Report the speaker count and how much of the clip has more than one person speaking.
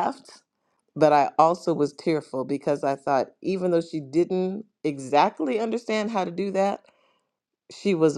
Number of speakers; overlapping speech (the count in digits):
1, no overlap